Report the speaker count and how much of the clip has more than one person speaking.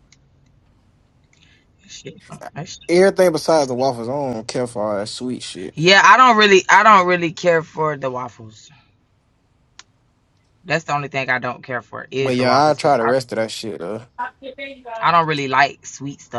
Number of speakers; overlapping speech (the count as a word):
two, about 6%